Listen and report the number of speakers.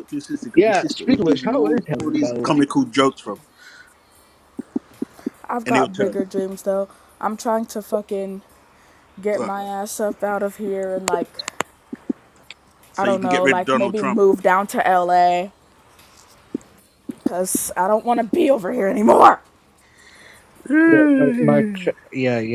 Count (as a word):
three